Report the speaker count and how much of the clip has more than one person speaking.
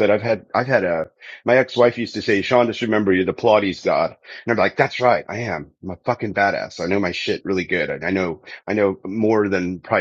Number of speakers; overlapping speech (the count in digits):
1, no overlap